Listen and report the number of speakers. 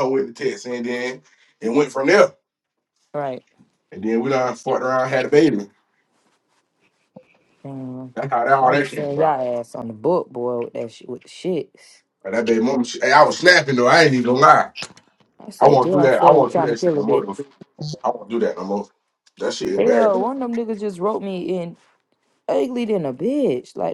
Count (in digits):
2